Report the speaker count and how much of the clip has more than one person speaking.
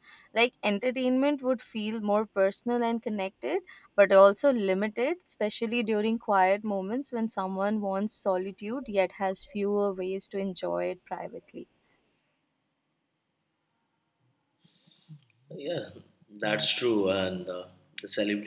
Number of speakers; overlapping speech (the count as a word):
two, no overlap